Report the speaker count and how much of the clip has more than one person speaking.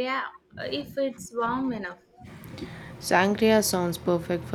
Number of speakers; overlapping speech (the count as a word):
two, no overlap